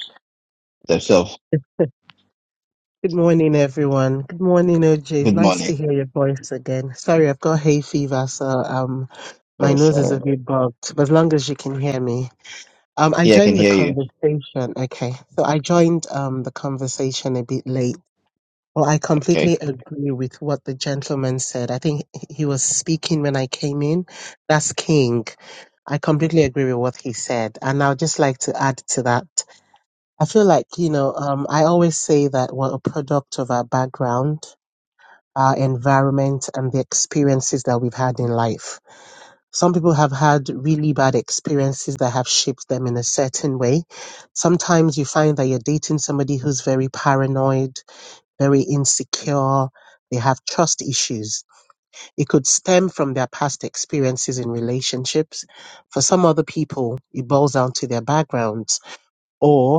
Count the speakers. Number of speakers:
2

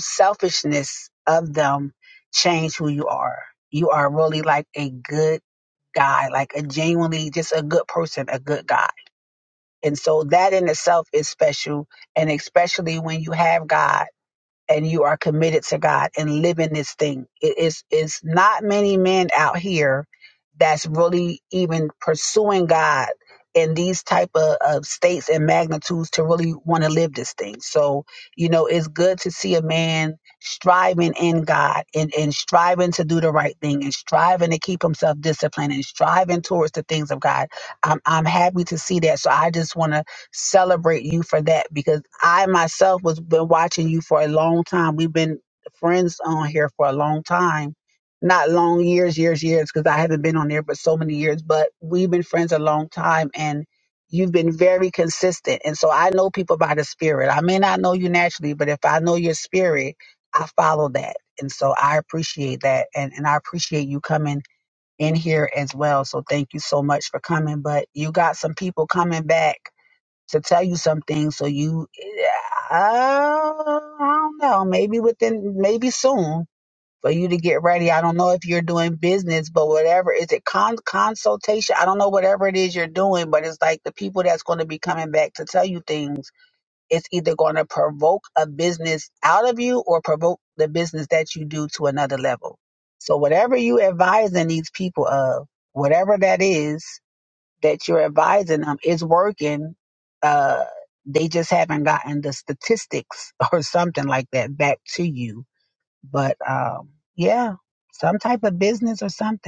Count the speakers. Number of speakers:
1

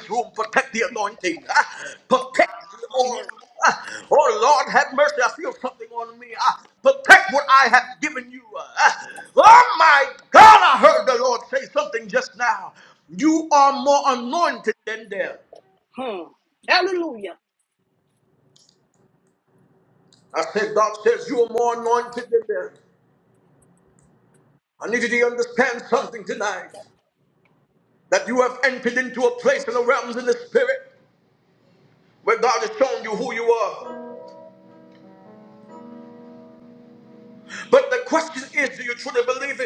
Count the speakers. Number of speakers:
2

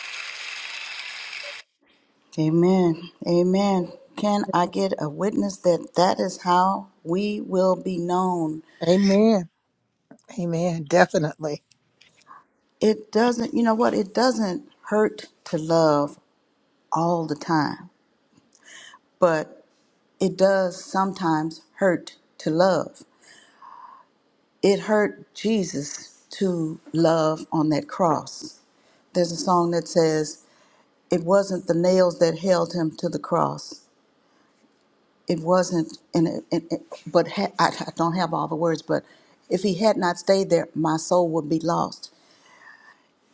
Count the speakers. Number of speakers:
2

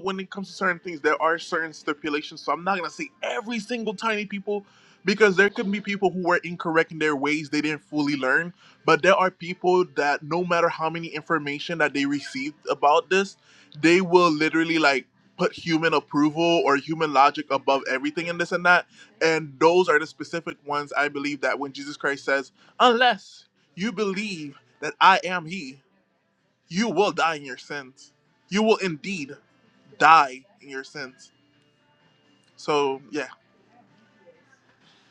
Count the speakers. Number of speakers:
1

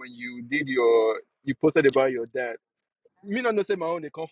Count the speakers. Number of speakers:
1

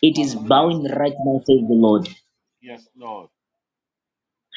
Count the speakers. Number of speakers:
2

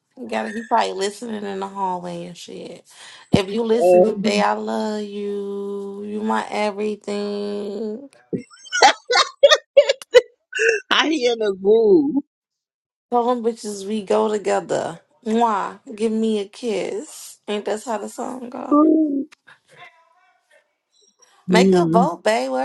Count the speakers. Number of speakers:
2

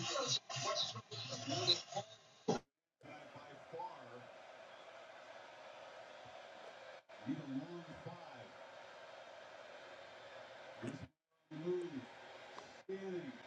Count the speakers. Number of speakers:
0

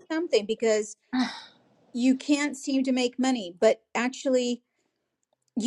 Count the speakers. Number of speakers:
1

